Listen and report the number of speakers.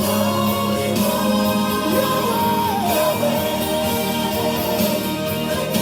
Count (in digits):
0